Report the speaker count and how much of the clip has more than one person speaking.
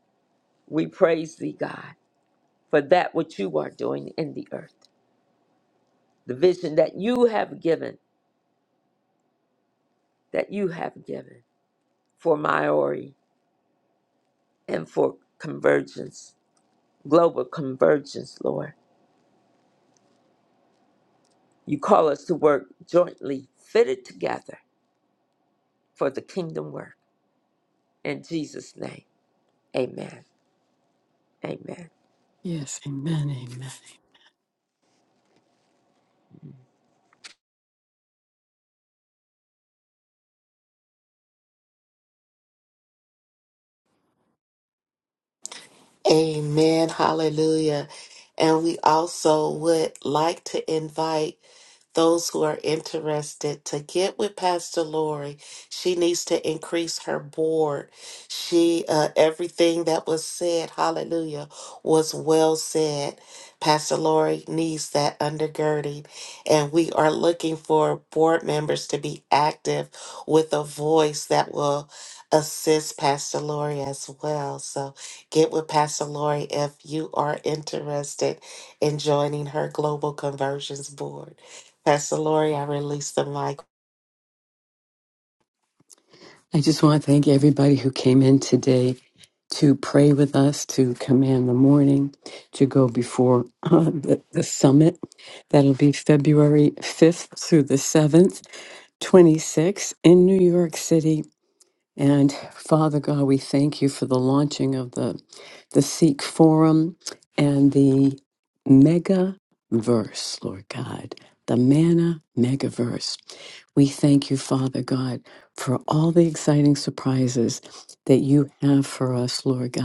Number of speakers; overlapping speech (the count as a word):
three, no overlap